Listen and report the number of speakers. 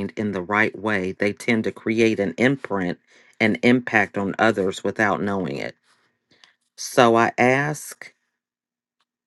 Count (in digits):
1